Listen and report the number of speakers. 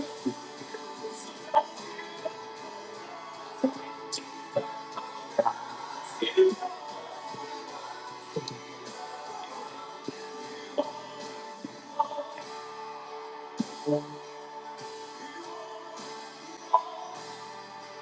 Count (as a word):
zero